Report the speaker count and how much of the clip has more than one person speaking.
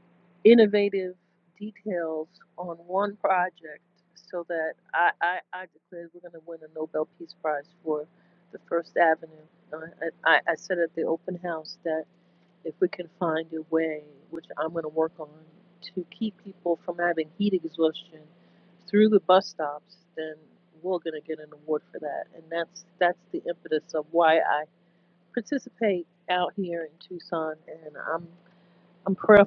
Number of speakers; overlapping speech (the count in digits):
1, no overlap